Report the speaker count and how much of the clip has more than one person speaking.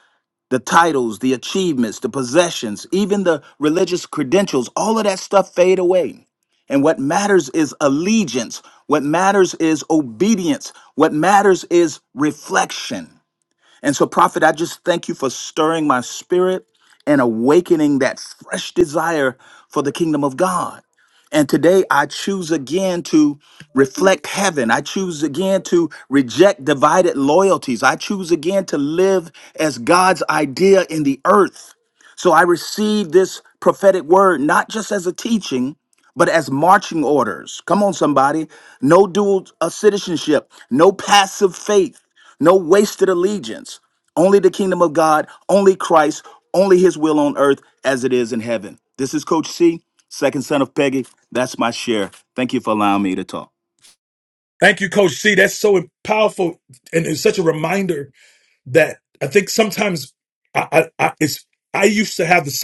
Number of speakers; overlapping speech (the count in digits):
2, no overlap